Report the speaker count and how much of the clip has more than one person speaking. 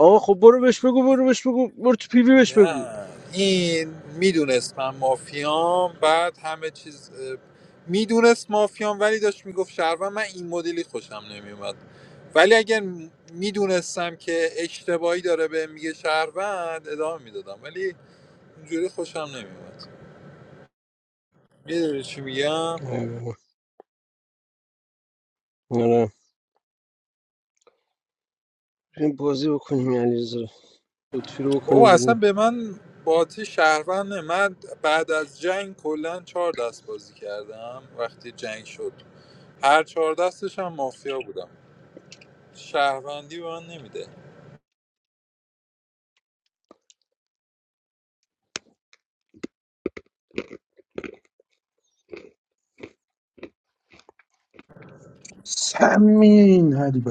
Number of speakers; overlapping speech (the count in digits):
3, about 2%